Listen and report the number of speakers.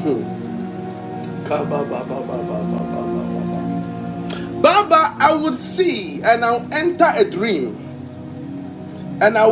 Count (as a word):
one